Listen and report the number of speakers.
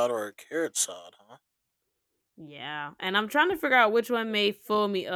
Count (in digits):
2